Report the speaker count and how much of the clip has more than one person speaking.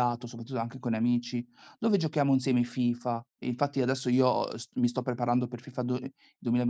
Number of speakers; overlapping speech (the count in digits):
1, no overlap